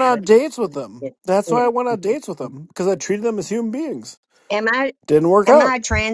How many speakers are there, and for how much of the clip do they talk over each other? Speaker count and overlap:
2, about 10%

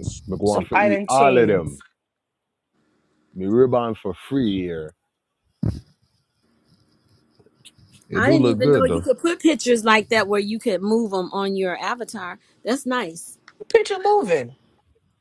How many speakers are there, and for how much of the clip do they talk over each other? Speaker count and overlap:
3, about 13%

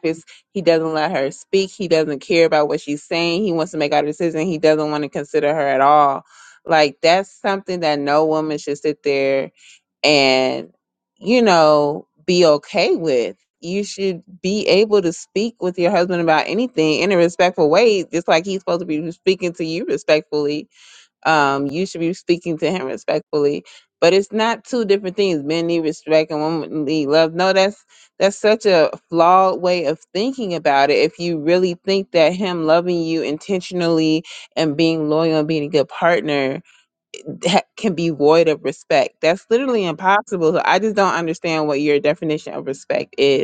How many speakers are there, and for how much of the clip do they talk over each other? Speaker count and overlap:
1, no overlap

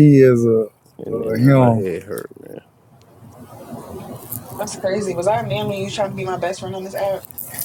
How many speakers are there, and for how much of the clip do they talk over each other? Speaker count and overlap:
3, about 9%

